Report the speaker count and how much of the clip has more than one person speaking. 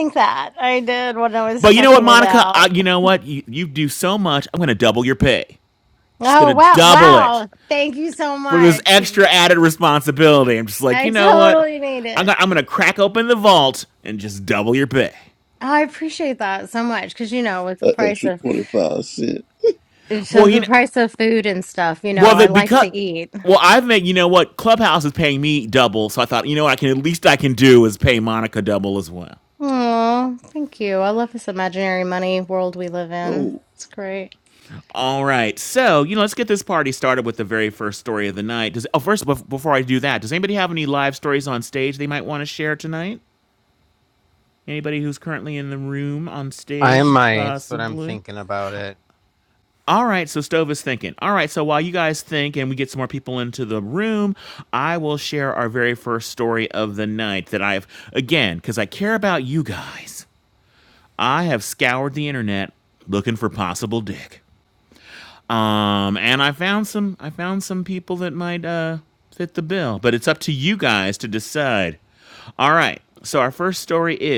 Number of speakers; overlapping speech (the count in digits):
4, about 9%